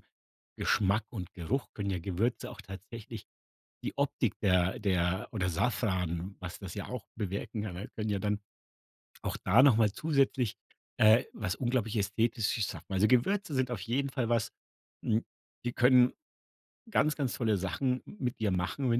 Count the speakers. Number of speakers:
1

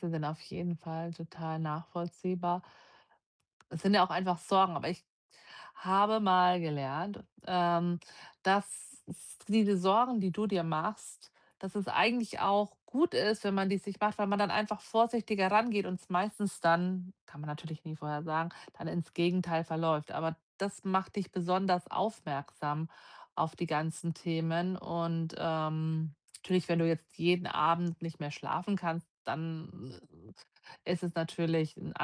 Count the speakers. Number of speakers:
1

